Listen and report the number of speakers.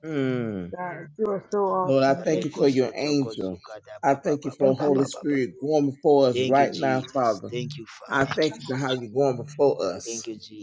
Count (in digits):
3